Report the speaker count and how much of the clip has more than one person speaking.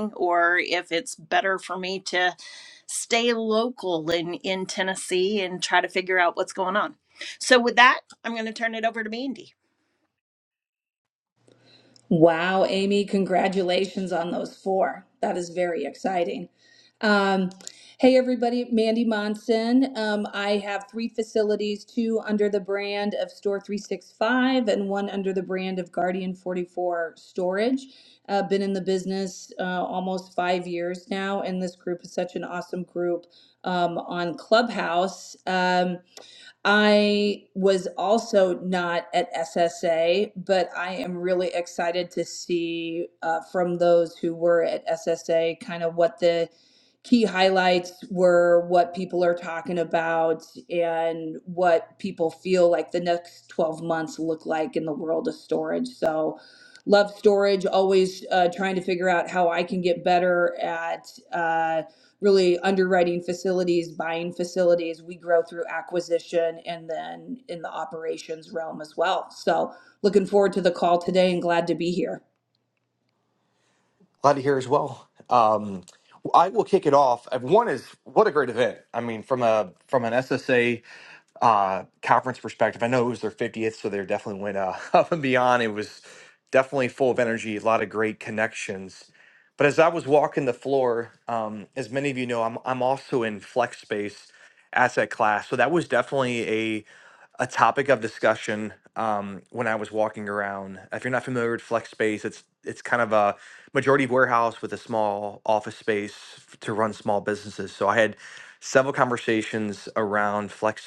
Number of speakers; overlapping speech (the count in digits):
3, no overlap